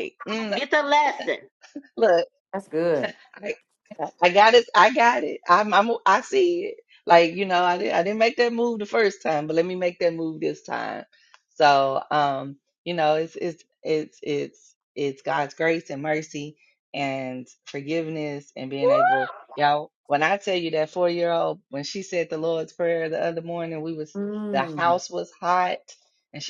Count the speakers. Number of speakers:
3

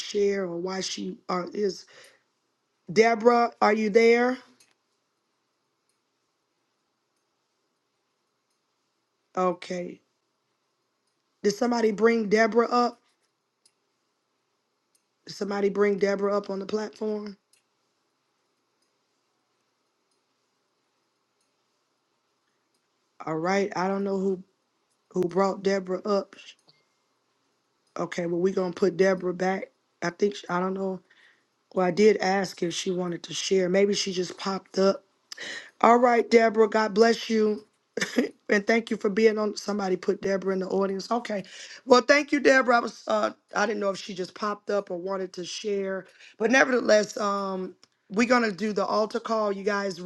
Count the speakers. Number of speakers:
1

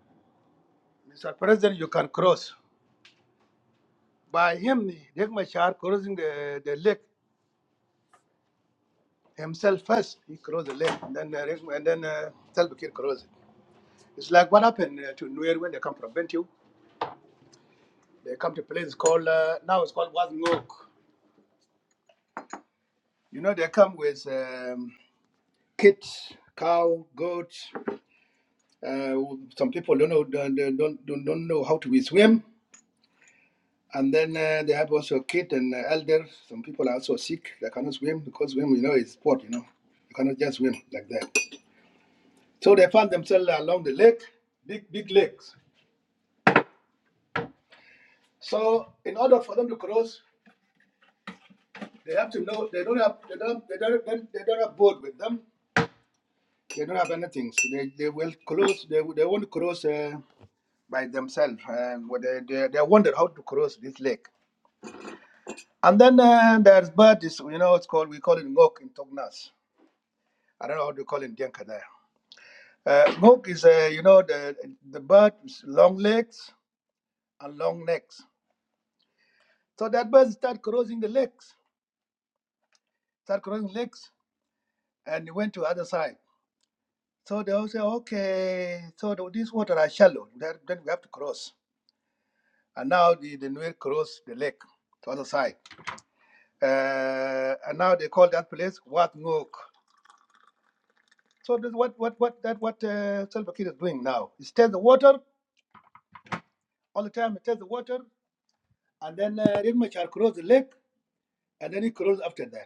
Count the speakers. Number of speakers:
1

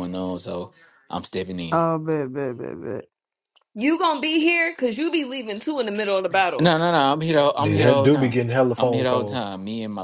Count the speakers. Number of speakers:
4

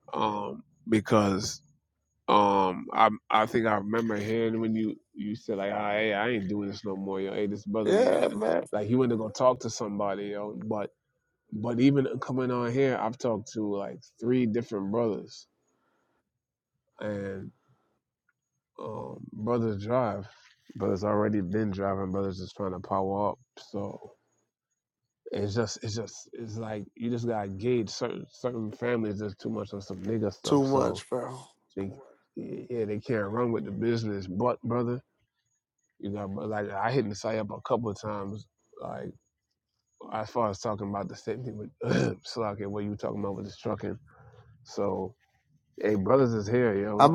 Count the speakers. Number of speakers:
2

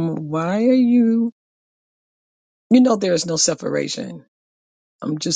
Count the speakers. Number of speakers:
1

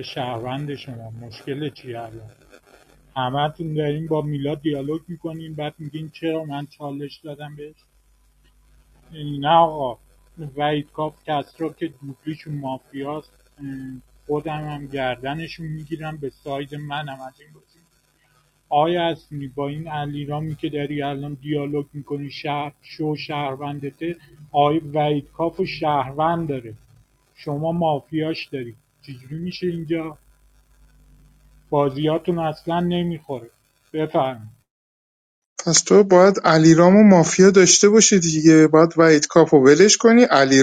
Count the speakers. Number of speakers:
2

